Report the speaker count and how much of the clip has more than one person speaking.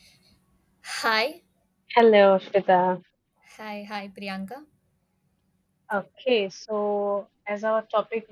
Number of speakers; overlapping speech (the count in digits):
2, no overlap